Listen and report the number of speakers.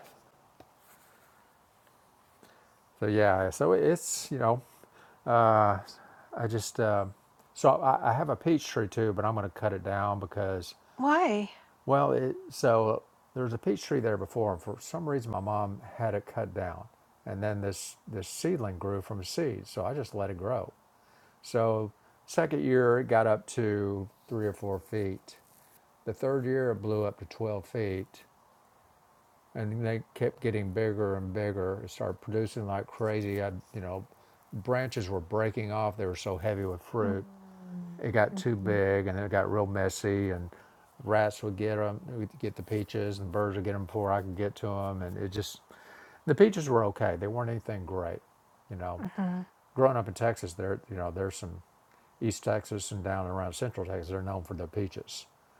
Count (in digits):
2